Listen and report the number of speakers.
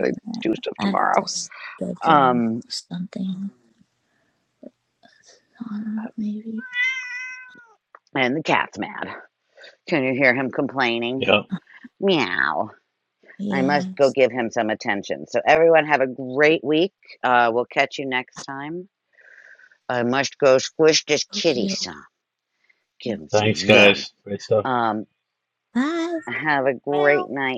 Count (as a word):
three